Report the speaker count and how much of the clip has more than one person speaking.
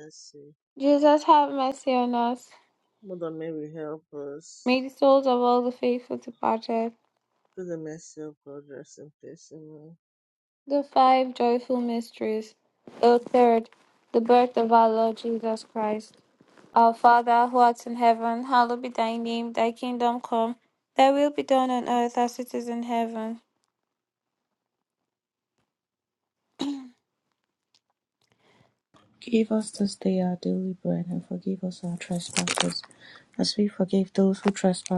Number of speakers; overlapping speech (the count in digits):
3, no overlap